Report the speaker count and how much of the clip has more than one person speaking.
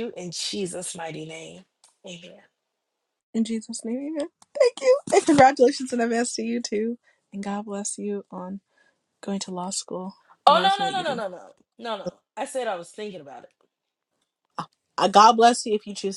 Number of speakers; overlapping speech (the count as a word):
two, about 4%